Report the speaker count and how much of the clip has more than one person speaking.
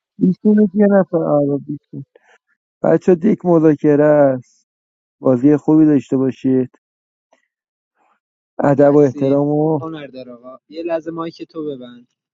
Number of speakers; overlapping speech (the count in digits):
2, about 4%